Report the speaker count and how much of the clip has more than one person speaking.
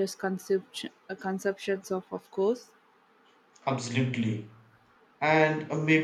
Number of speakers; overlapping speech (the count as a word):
two, no overlap